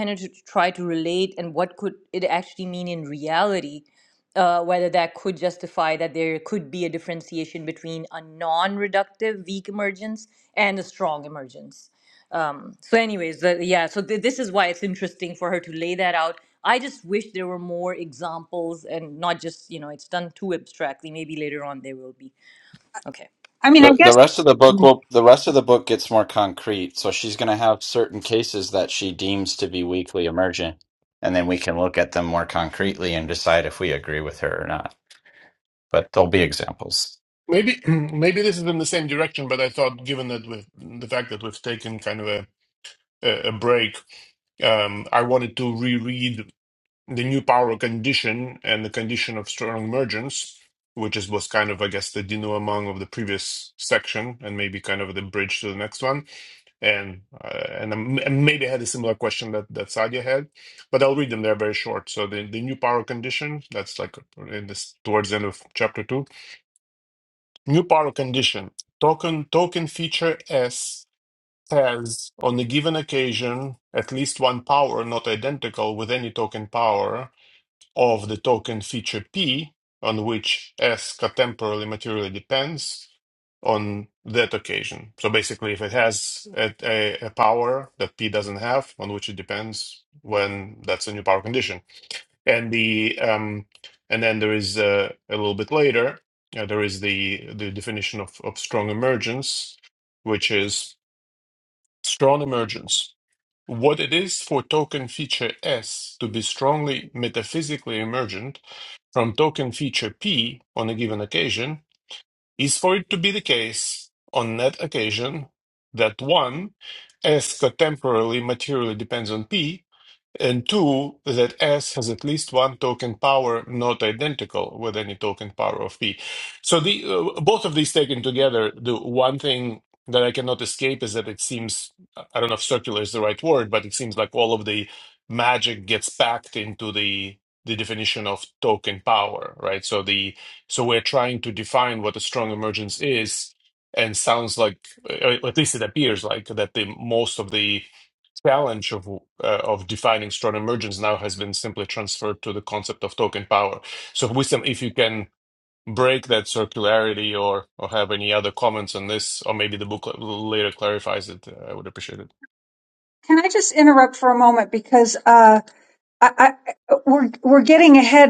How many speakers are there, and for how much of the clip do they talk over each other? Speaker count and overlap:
4, under 1%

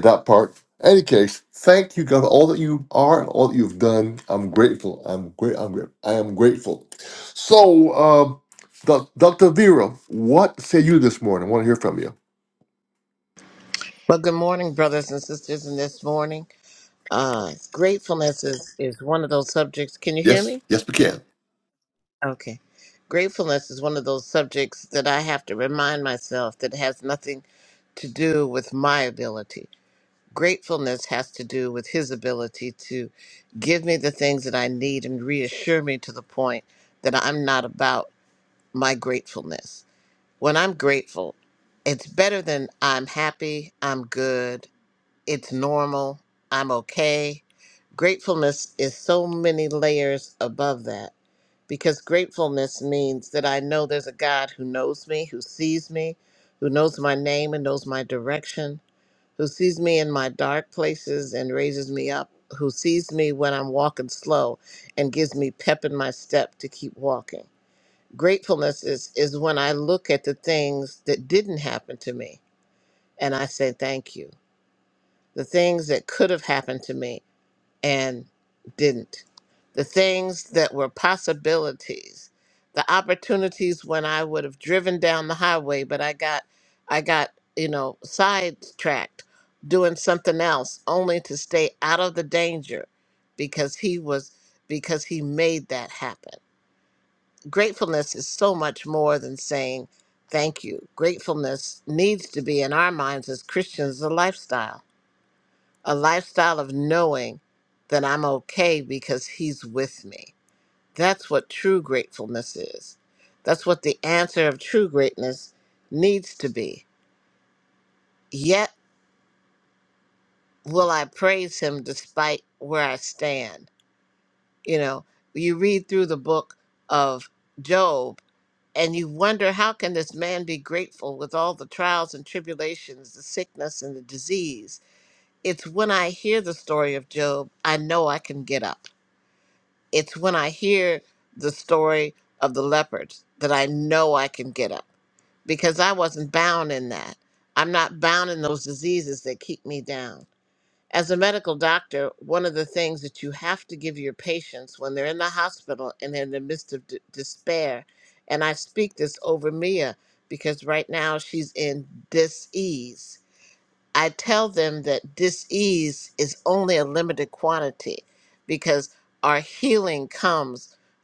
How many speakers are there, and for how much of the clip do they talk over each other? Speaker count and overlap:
2, under 1%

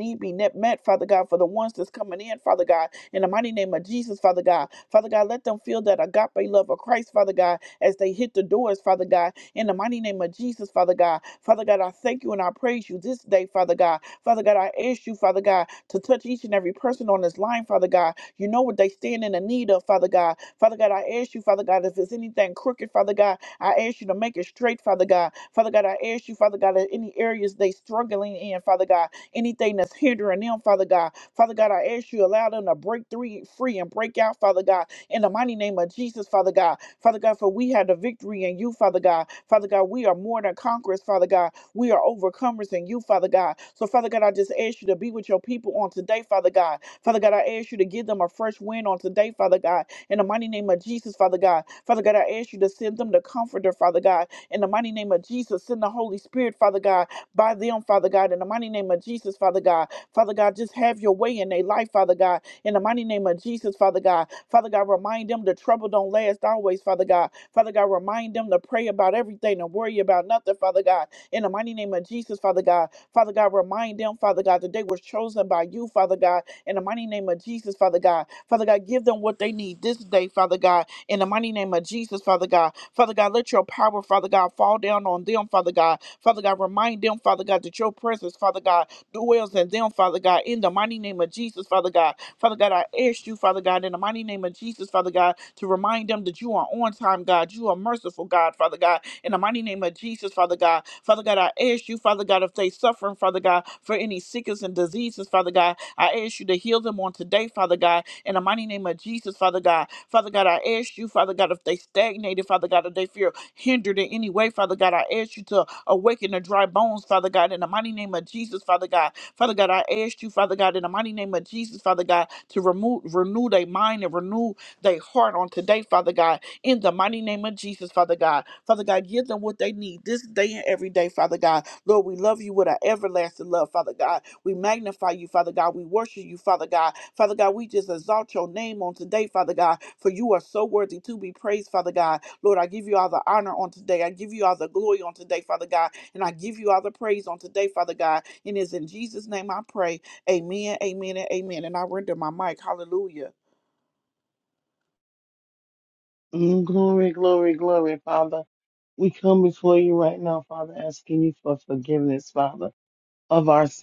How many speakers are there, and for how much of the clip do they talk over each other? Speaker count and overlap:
2, no overlap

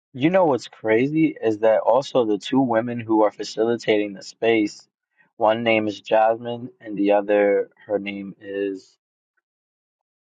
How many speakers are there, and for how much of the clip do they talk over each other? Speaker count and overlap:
1, no overlap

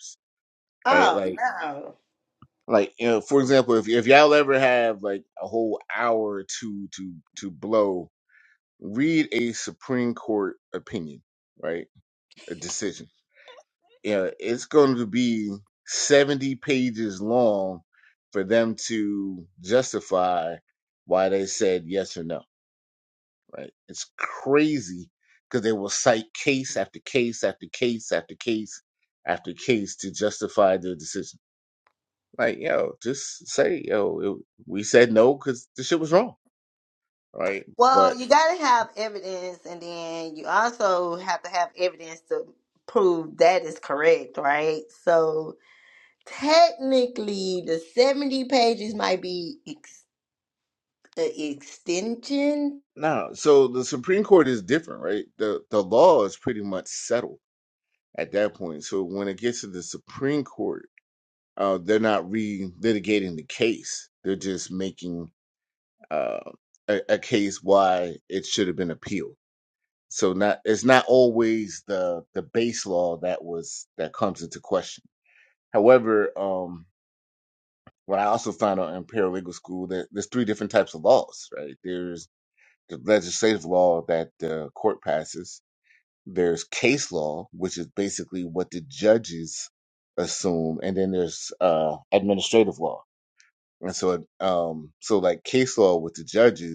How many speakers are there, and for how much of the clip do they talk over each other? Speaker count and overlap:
2, about 1%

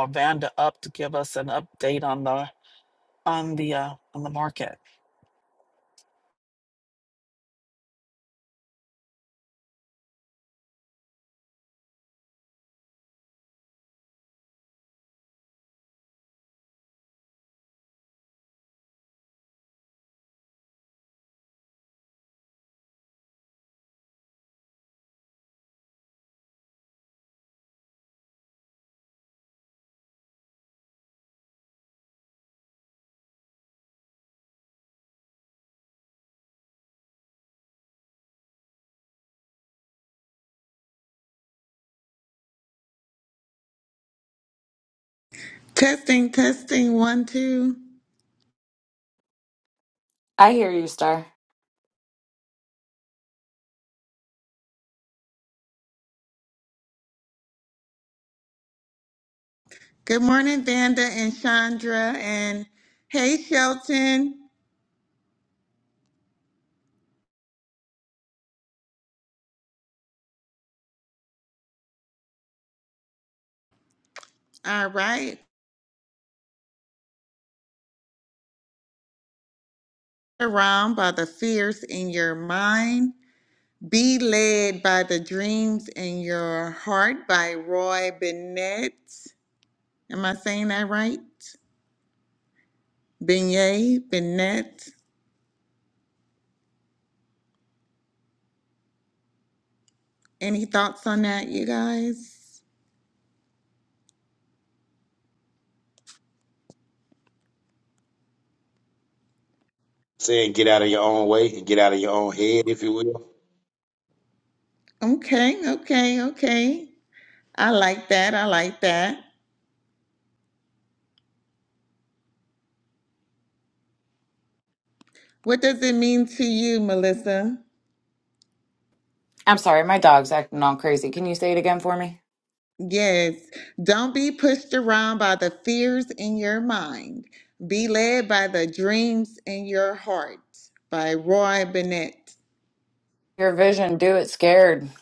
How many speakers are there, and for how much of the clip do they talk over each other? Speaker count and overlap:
4, no overlap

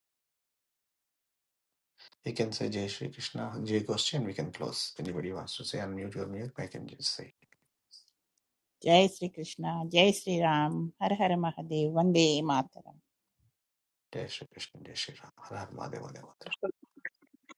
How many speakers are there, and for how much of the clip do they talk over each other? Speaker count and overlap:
2, no overlap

